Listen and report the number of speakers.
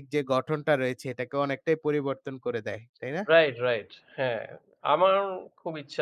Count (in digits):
2